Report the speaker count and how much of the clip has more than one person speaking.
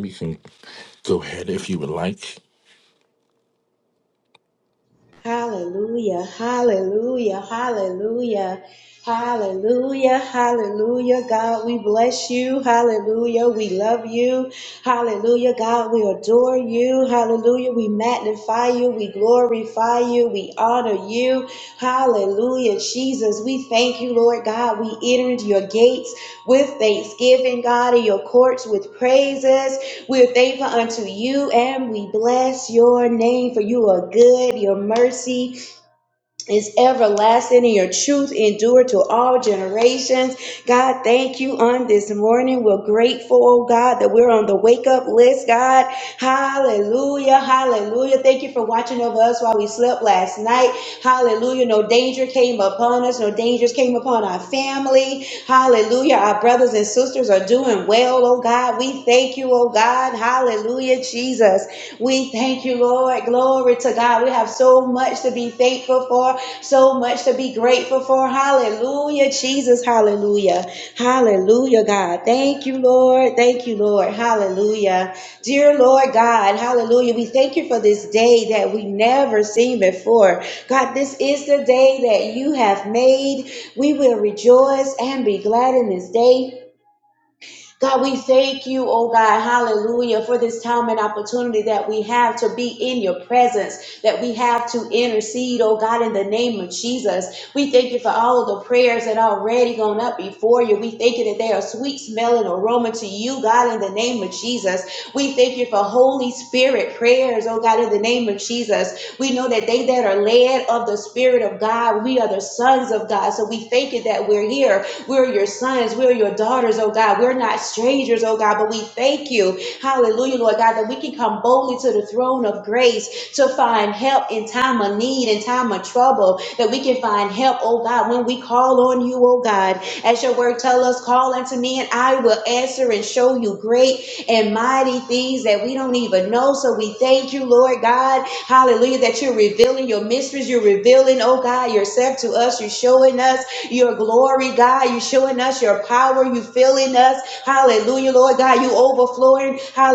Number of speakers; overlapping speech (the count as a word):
two, no overlap